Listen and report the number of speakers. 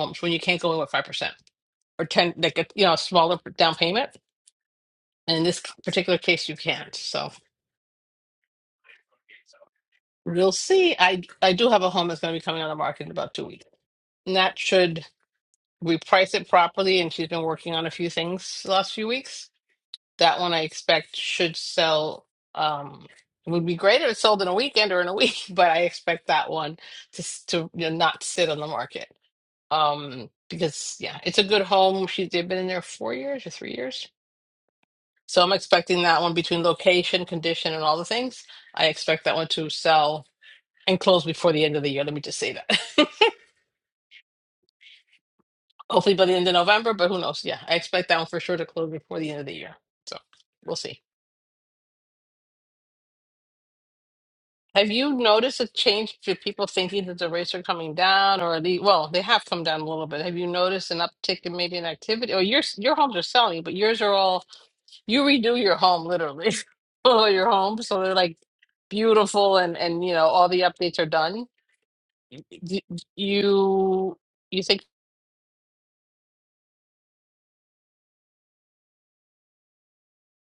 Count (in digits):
1